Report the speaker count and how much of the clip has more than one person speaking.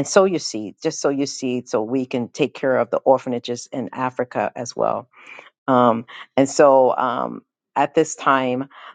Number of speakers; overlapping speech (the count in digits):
1, no overlap